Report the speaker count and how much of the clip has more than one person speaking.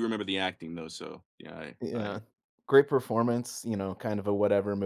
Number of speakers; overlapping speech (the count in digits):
2, about 7%